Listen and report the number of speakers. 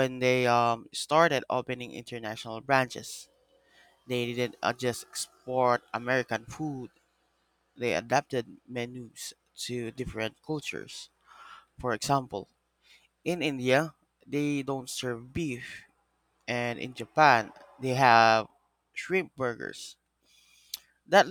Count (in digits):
1